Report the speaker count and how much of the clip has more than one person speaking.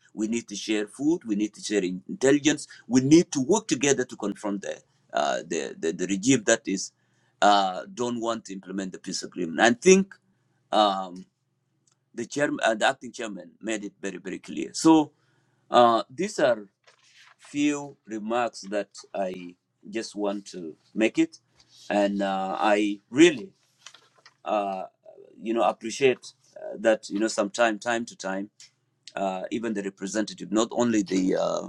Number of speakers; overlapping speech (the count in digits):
1, no overlap